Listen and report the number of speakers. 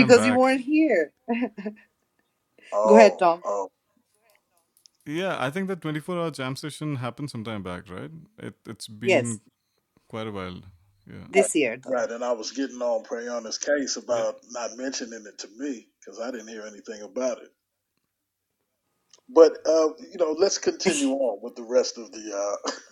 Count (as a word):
three